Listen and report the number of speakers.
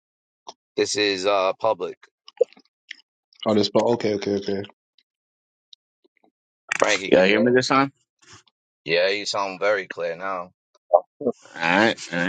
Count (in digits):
3